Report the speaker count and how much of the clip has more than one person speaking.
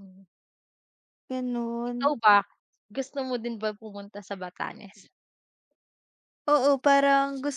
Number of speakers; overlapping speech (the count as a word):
two, about 2%